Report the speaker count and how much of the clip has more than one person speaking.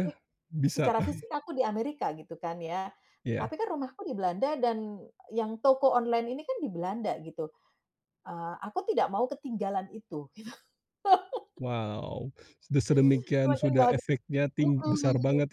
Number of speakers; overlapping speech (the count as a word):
two, about 11%